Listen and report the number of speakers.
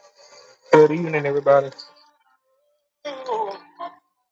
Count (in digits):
1